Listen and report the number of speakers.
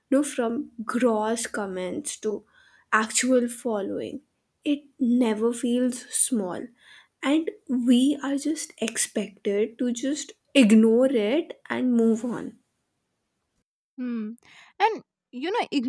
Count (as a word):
two